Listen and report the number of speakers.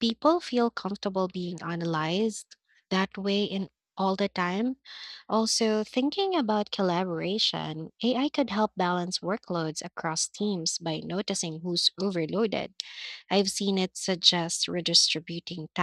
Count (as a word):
one